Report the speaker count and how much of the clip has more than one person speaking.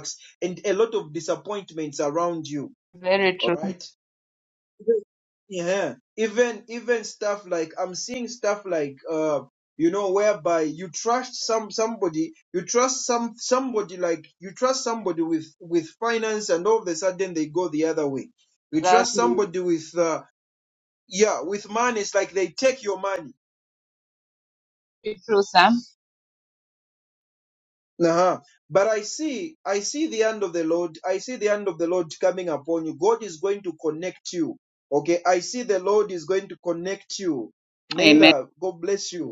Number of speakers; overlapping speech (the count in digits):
2, about 3%